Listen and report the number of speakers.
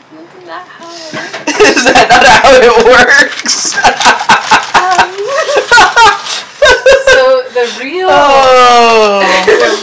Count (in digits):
3